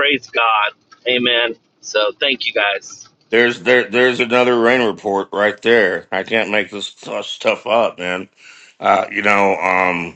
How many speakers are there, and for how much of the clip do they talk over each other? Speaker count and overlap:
2, no overlap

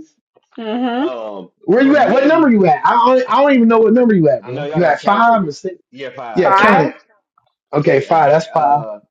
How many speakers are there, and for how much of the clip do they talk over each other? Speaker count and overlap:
3, about 39%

